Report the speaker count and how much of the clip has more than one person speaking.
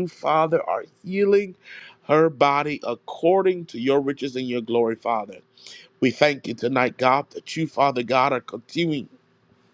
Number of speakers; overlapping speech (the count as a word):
one, no overlap